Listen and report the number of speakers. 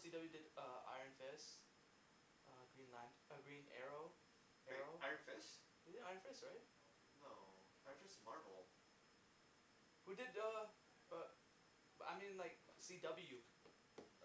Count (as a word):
two